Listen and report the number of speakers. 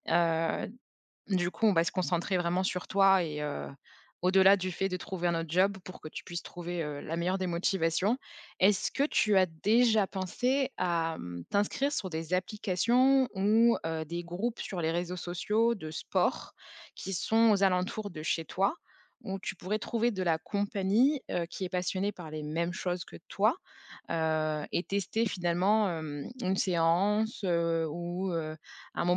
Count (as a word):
one